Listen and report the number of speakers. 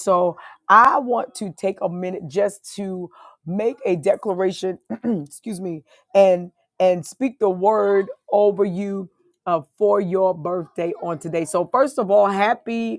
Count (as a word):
one